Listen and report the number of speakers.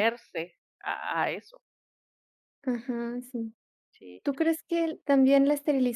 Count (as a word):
two